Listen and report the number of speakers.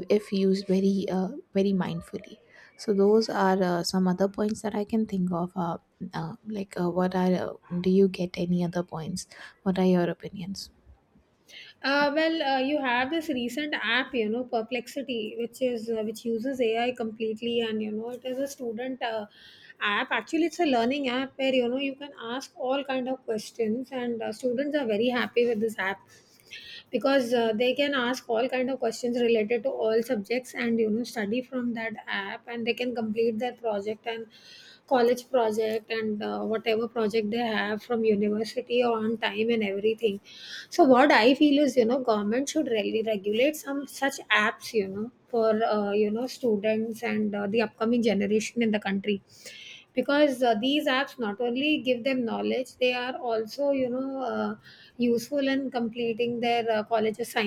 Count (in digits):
2